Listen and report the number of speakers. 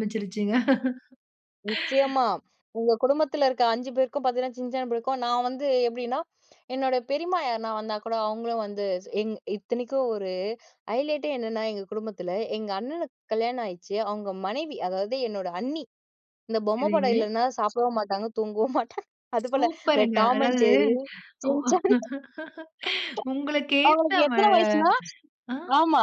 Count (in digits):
2